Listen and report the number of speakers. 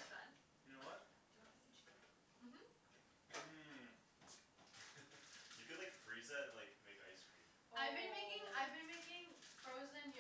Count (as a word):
four